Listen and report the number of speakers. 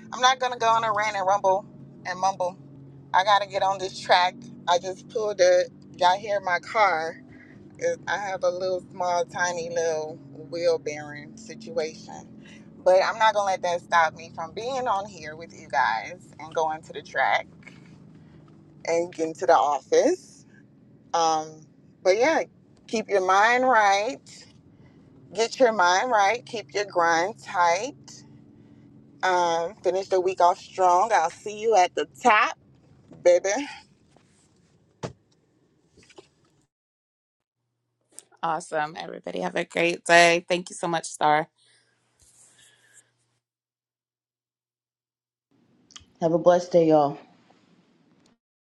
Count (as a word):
three